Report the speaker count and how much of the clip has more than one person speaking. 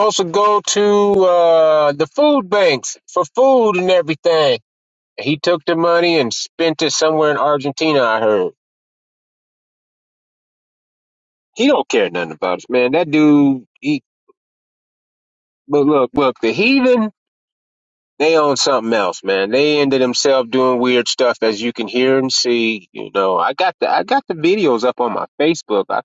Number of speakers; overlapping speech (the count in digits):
1, no overlap